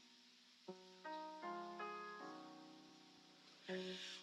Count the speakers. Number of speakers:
zero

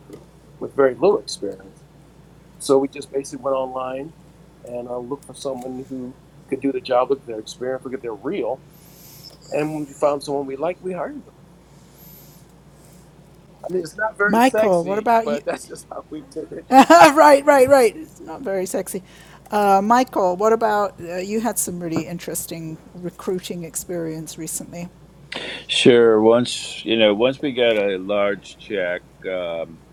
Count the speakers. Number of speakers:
three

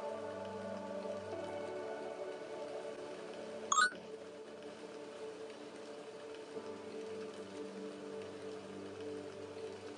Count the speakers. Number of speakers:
zero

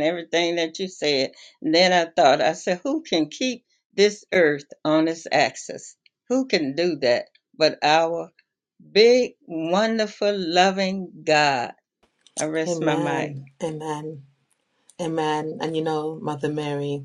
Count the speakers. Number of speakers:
two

